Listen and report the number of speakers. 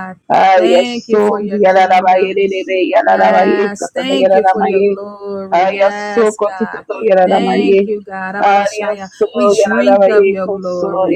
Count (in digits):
2